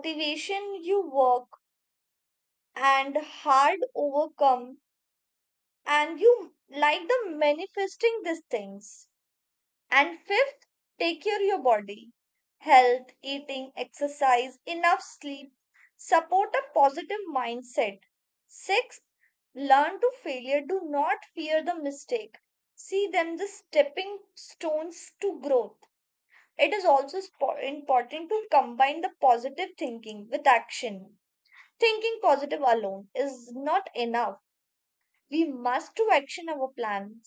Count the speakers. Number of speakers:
one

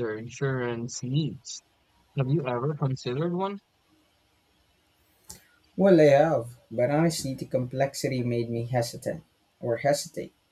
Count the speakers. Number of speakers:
two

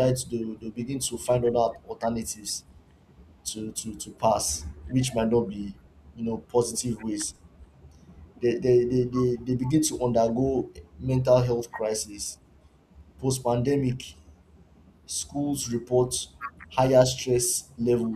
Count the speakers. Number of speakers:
one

